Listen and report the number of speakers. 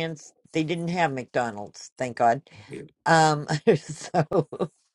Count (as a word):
one